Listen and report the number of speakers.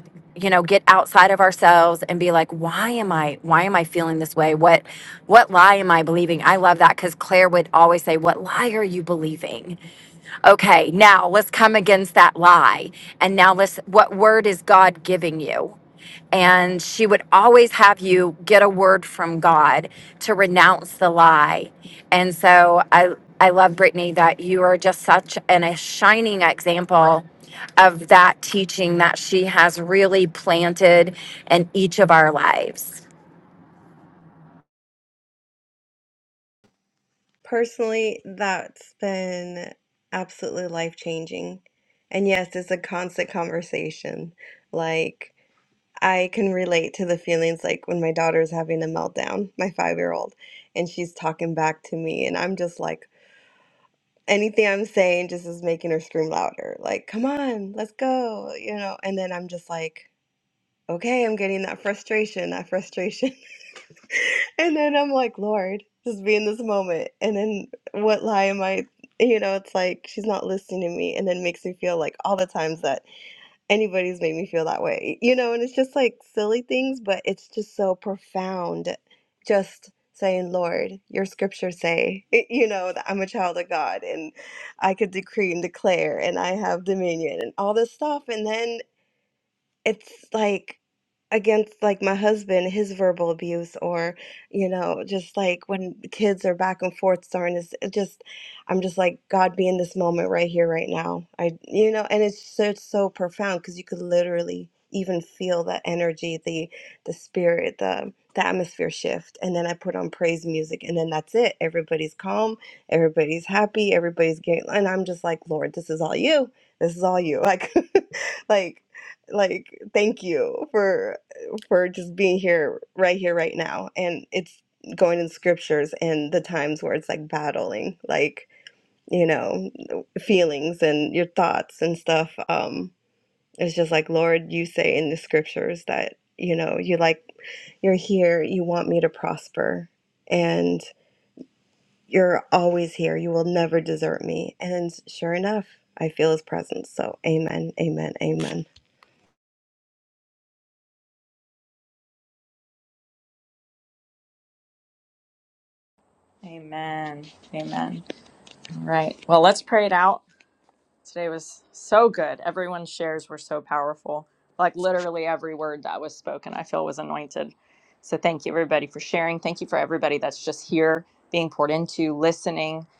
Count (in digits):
3